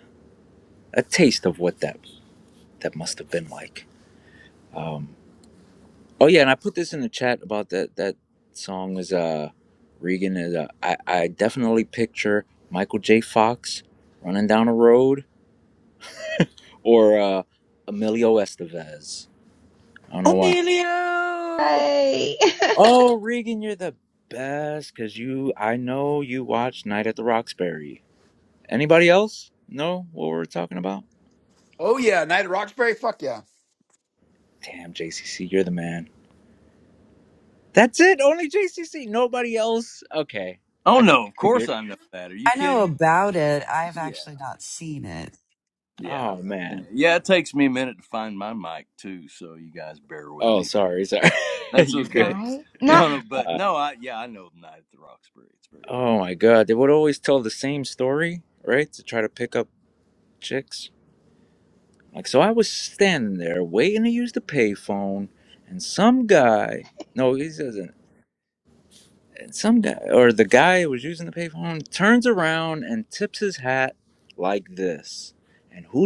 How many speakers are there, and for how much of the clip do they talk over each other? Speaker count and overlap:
6, about 5%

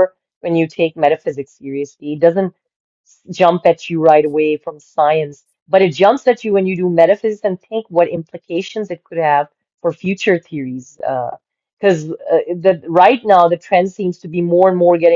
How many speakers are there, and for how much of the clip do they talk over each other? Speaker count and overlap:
1, no overlap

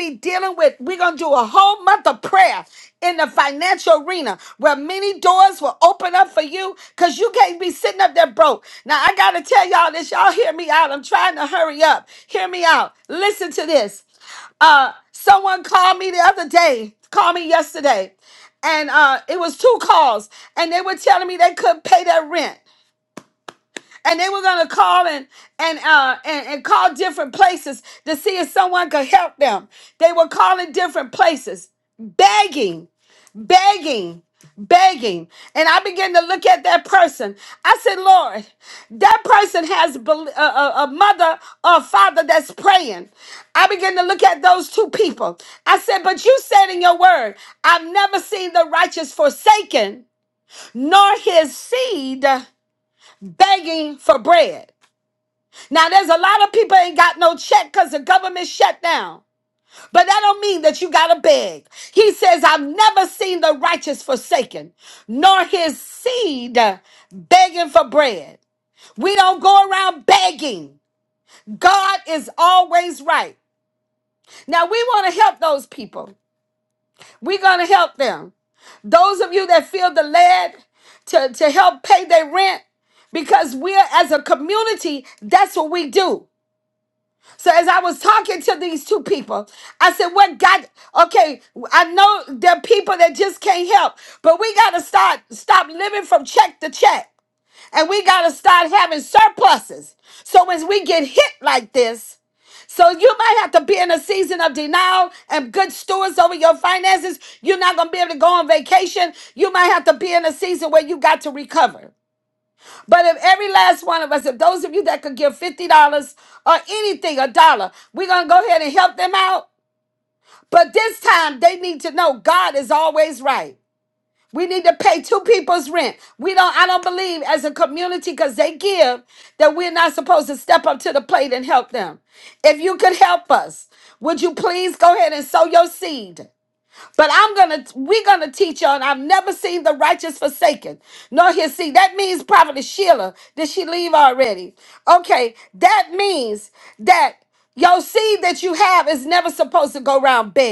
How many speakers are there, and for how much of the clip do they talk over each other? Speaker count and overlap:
1, no overlap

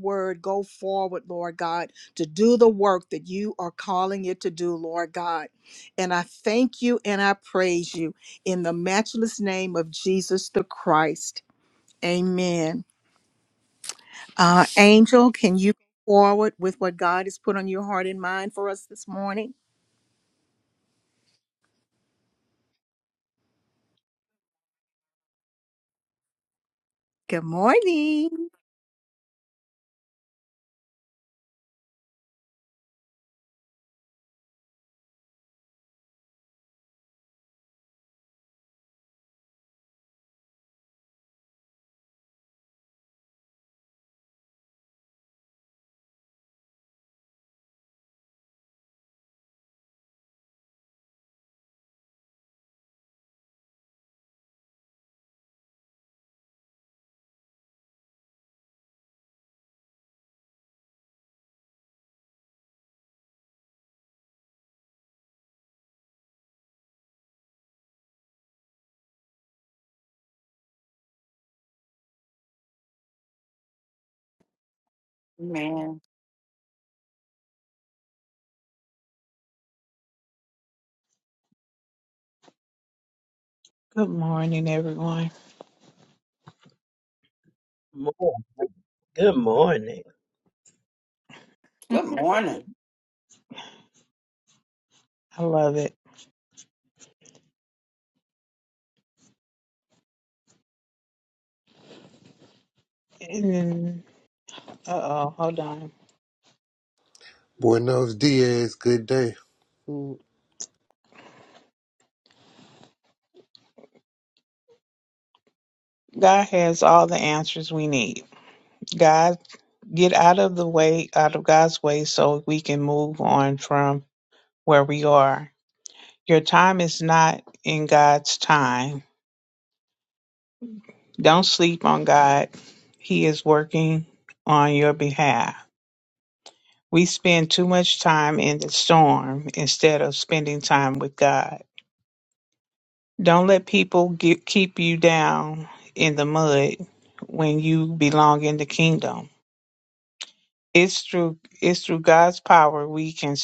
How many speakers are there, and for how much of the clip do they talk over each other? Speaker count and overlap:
5, no overlap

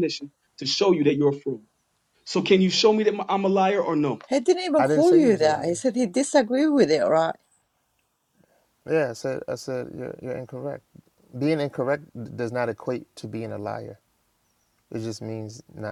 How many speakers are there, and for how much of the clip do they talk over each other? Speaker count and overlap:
3, about 6%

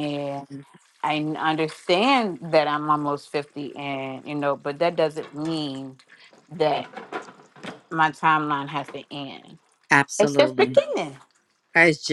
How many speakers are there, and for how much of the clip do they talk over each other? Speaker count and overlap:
2, about 5%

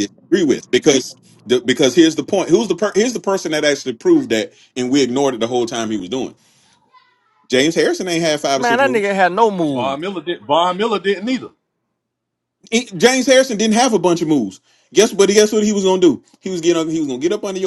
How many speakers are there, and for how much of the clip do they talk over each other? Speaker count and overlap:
3, about 4%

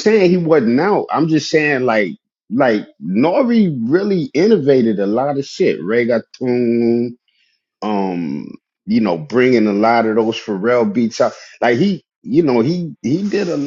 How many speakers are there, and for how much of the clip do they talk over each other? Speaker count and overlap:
1, no overlap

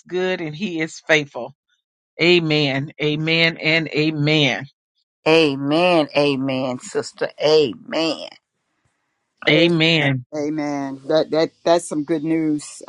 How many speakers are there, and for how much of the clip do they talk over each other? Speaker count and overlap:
3, about 2%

